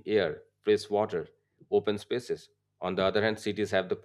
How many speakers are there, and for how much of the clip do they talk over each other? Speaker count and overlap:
one, no overlap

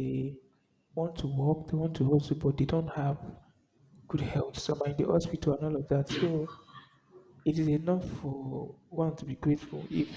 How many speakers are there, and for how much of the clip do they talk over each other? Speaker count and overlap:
one, no overlap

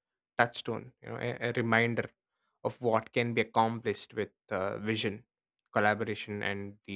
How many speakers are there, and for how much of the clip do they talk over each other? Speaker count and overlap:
one, no overlap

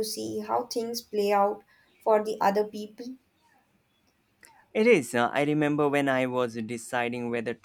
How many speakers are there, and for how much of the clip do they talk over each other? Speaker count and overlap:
two, no overlap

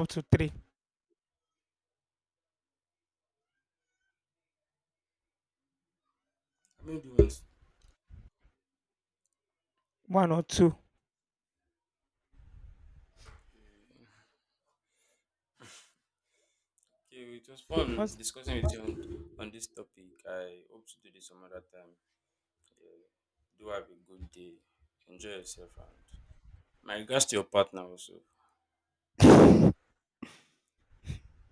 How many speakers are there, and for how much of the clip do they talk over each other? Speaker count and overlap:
two, under 1%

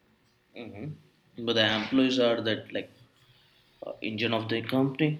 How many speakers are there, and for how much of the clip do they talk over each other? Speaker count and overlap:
one, no overlap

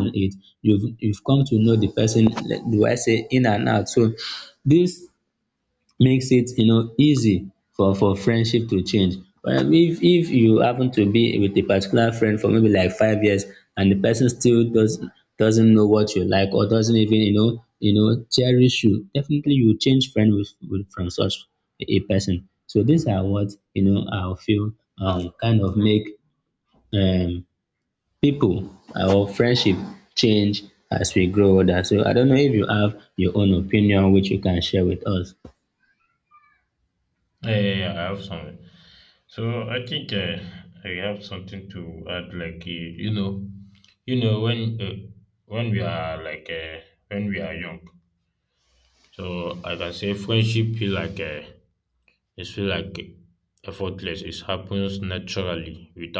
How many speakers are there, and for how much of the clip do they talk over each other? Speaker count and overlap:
two, no overlap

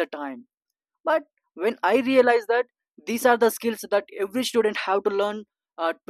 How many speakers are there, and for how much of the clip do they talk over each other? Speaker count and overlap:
one, no overlap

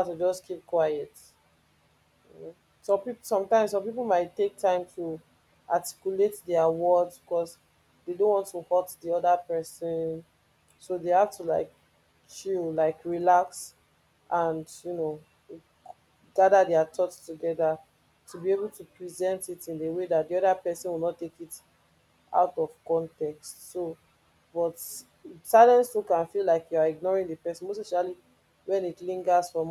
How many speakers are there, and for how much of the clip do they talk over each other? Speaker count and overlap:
one, no overlap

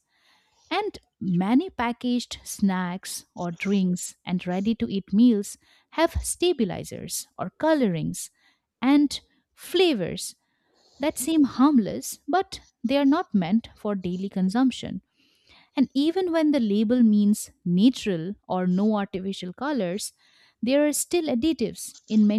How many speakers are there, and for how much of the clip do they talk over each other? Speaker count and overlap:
one, no overlap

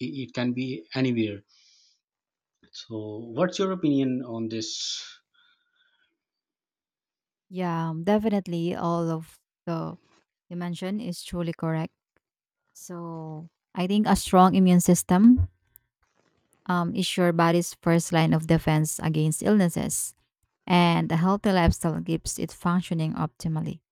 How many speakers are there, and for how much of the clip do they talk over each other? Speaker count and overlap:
two, no overlap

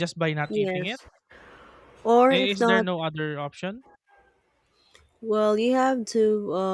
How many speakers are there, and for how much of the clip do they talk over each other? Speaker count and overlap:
two, about 14%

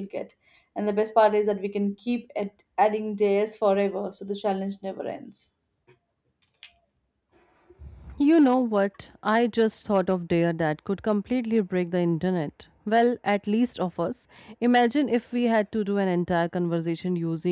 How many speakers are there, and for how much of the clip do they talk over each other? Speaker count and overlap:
two, no overlap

